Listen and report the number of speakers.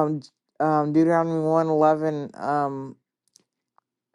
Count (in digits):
1